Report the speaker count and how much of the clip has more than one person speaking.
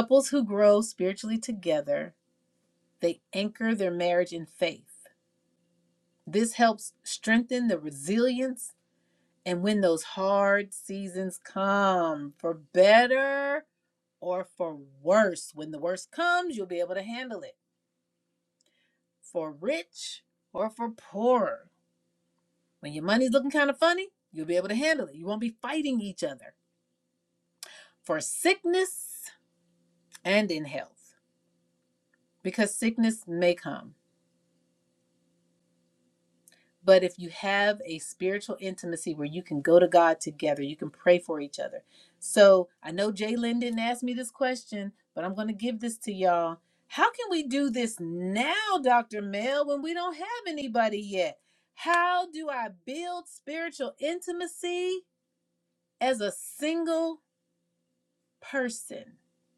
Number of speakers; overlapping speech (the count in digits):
1, no overlap